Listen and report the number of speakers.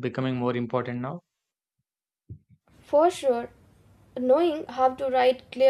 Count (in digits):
2